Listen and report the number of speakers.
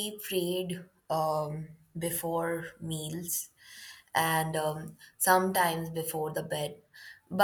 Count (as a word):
one